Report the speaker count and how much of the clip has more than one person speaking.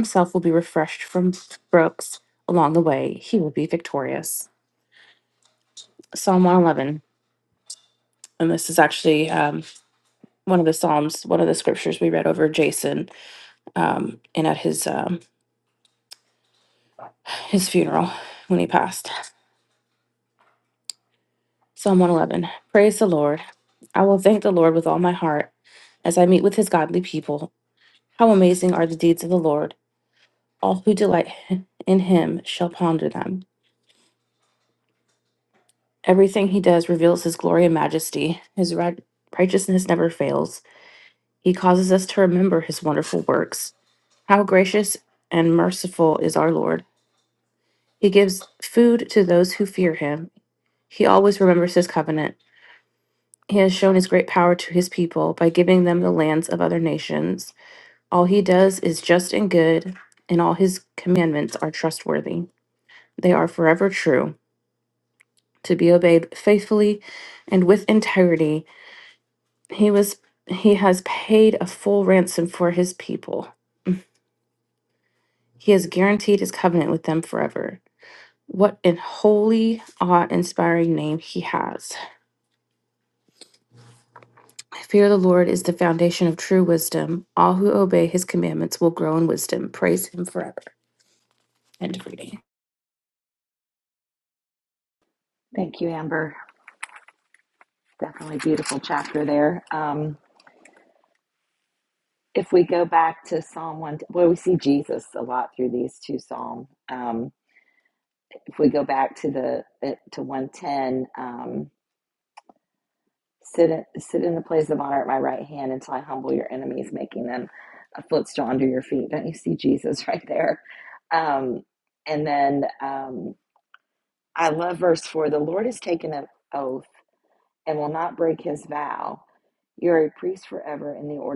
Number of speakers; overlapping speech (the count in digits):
2, no overlap